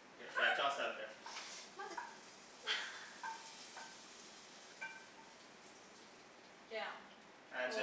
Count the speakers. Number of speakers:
two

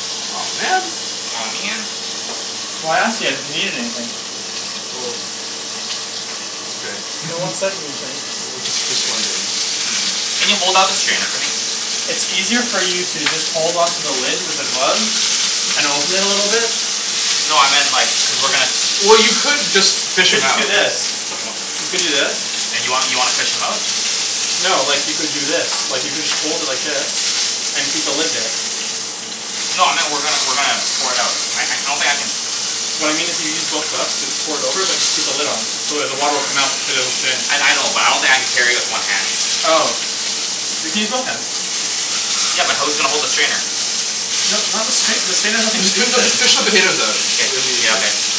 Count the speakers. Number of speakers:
three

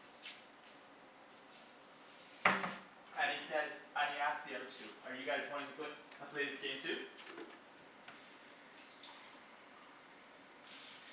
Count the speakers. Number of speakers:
one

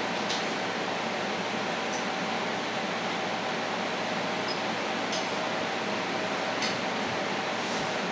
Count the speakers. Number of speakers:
zero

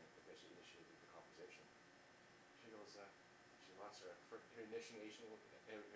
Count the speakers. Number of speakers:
one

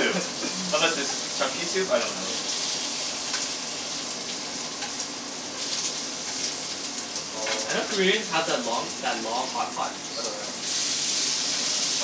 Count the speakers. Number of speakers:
two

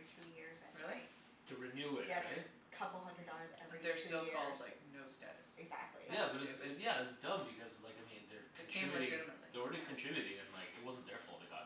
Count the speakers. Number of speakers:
three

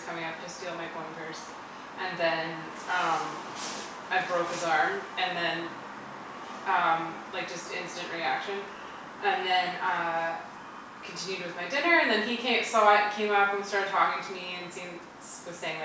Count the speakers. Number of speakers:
one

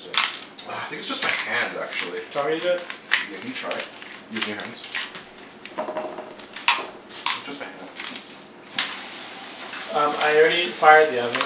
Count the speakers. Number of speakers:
two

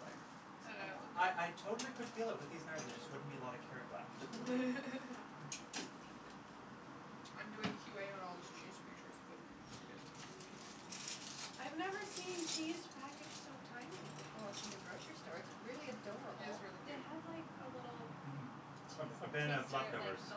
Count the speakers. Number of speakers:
four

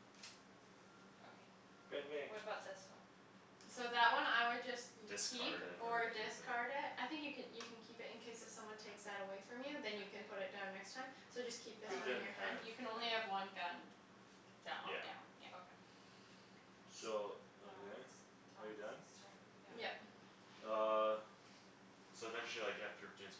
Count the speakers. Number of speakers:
four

